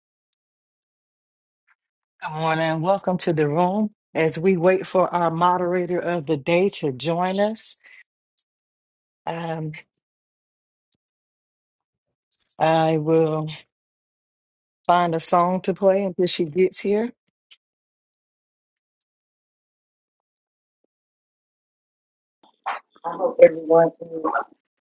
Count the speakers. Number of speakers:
1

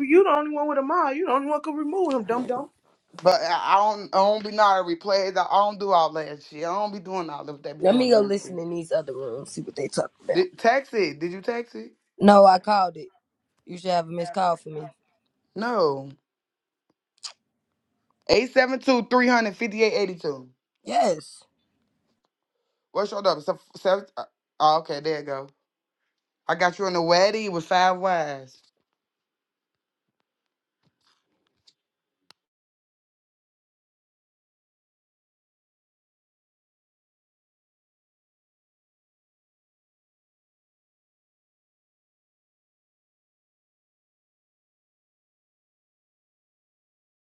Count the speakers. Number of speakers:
3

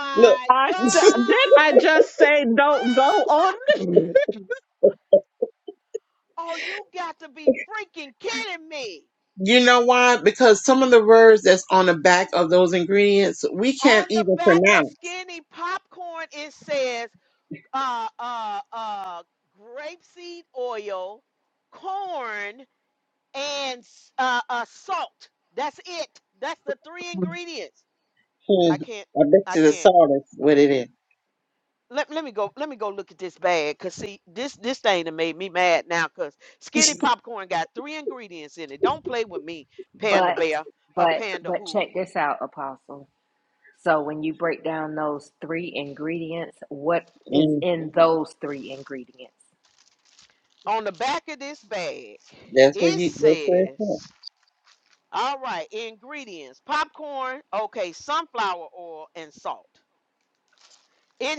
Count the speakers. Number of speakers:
4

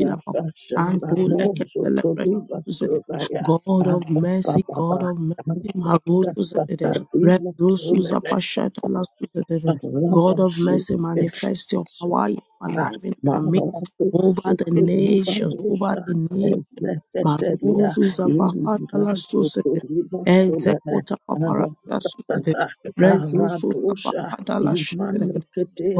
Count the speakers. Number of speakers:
2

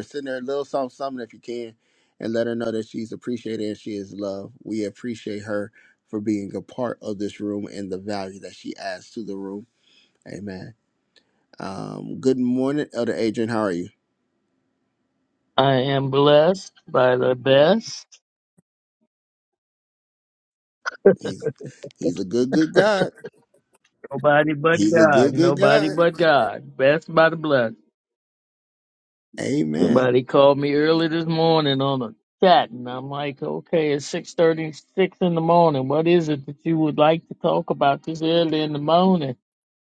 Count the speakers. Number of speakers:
2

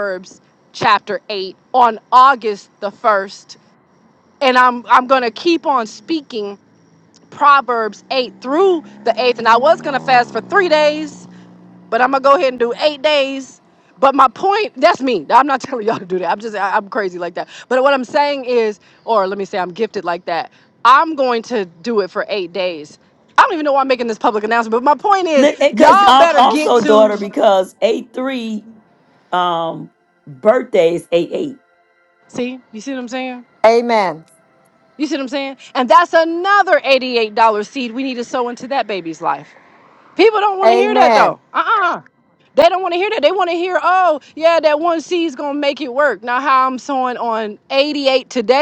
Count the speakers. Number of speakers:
3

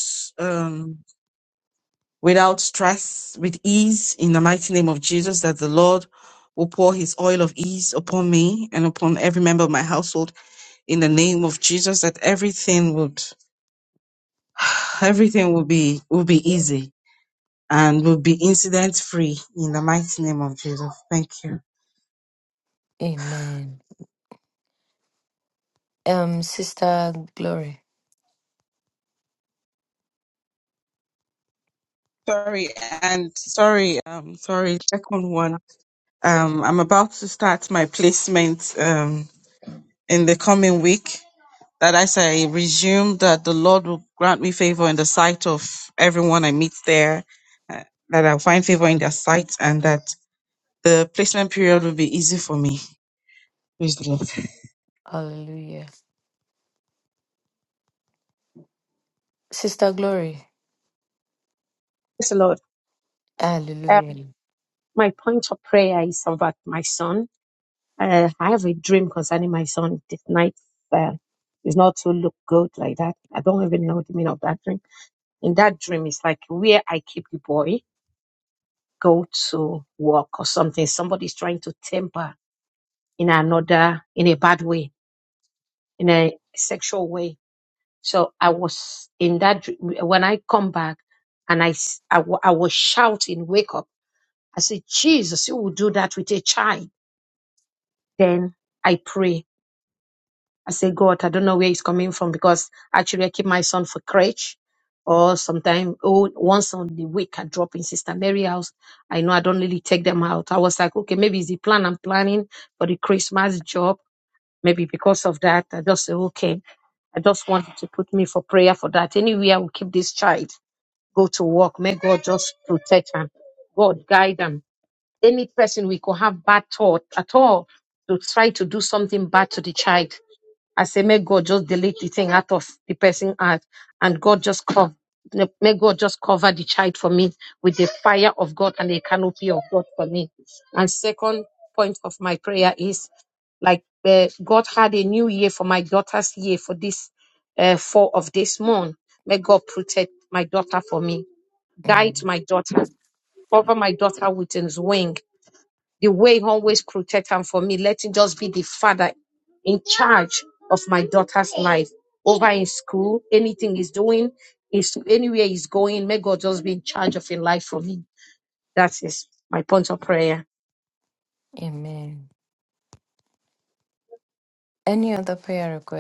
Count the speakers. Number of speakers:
3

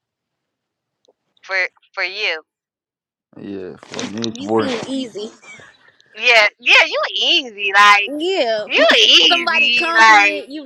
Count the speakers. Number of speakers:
3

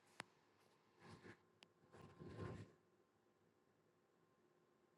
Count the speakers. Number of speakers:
0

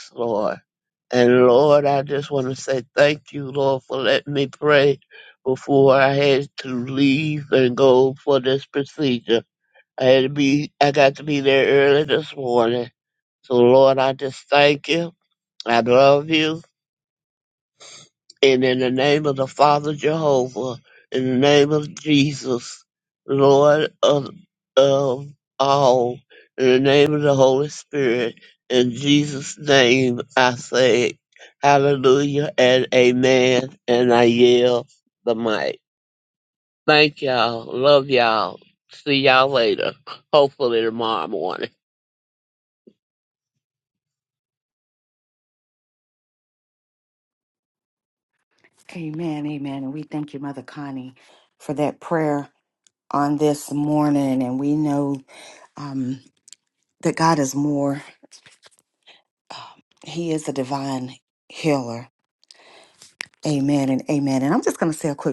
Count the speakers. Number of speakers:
2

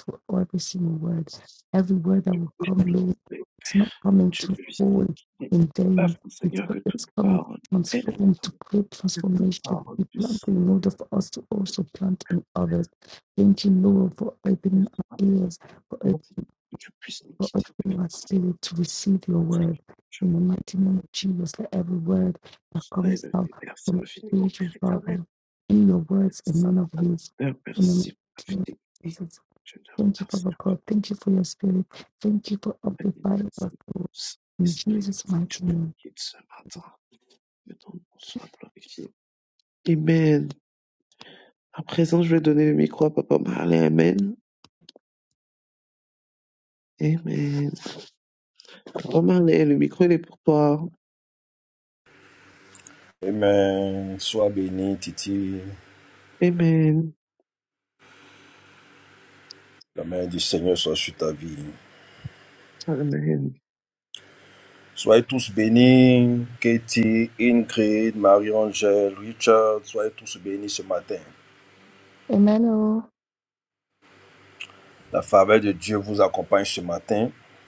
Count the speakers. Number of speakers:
3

